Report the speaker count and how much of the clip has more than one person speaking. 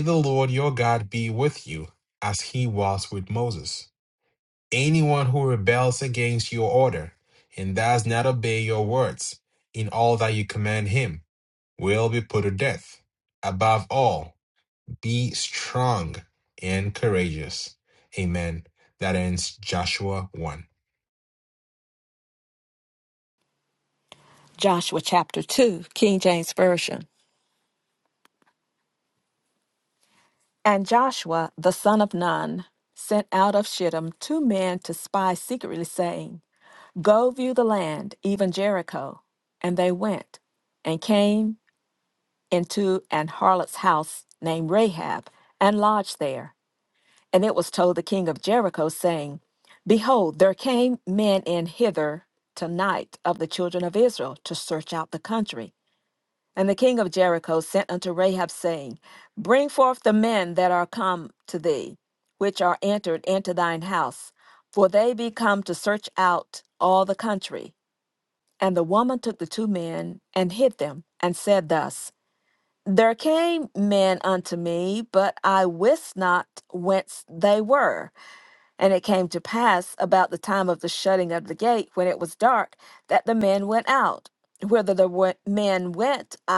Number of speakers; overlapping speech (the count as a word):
two, no overlap